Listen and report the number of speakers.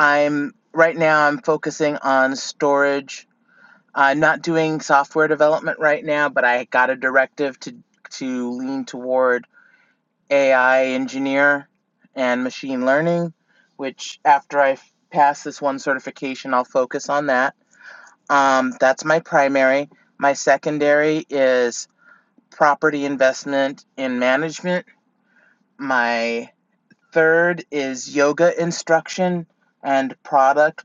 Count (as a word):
one